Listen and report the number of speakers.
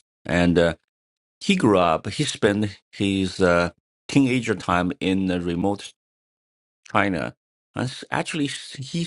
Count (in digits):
1